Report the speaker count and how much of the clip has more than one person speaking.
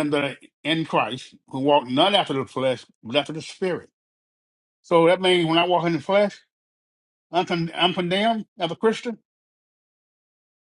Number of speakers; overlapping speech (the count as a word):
one, no overlap